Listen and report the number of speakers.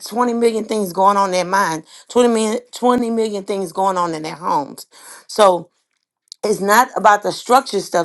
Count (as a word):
one